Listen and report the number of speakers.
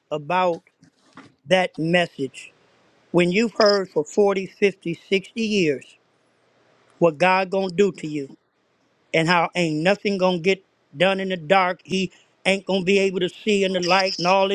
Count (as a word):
one